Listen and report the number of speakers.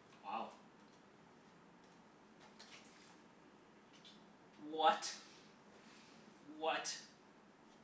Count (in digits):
1